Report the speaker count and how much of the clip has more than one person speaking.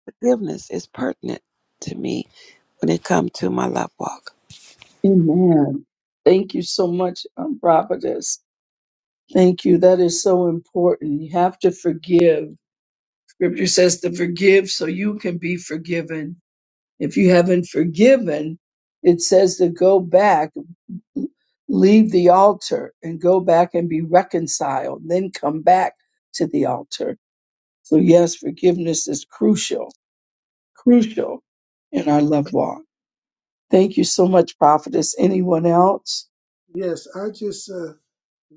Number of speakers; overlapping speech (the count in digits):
3, no overlap